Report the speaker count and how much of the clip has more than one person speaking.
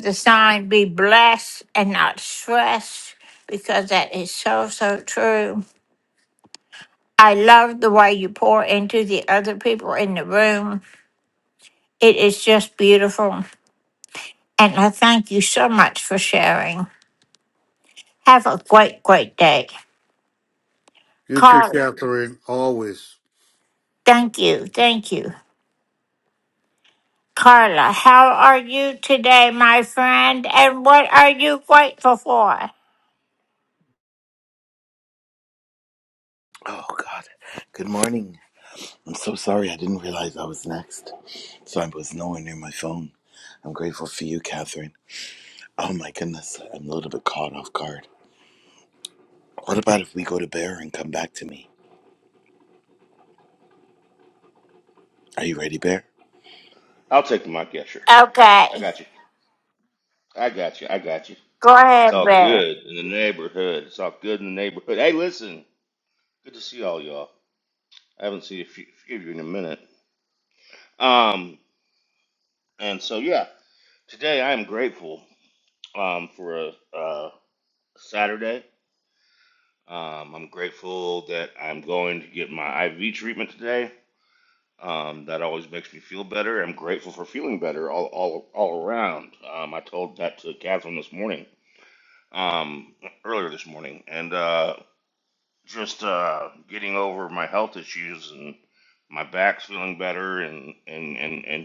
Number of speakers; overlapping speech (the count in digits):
4, about 1%